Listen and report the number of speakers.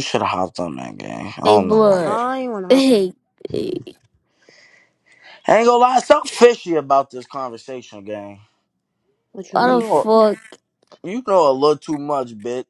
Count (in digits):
3